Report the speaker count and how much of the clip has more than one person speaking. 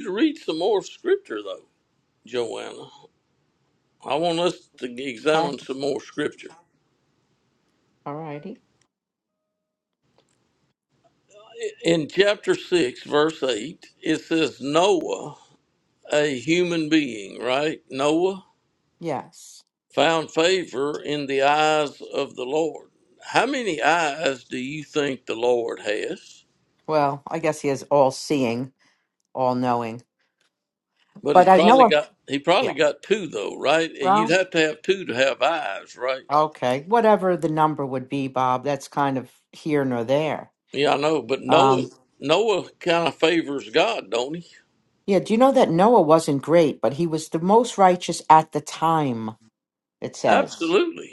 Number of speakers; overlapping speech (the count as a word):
two, about 3%